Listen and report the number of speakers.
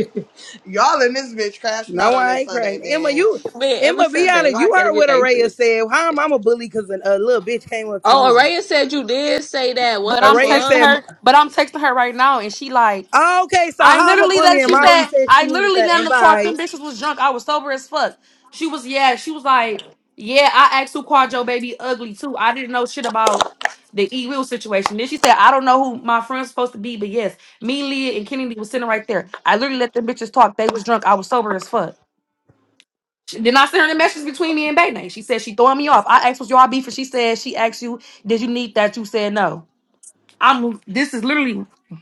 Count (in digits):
4